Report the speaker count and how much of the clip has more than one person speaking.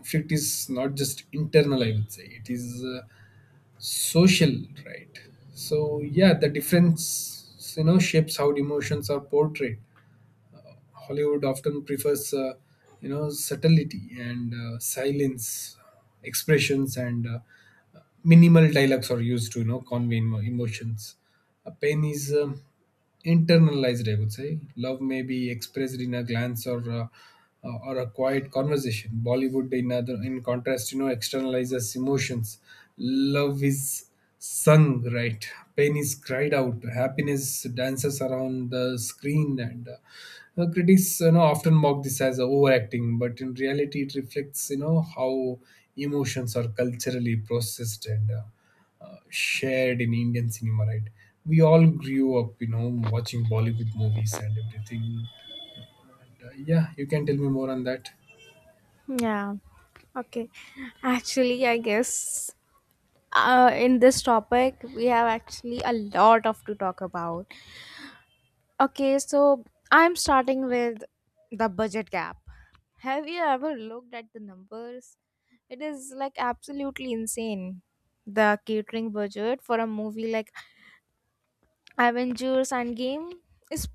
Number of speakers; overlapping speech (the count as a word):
two, no overlap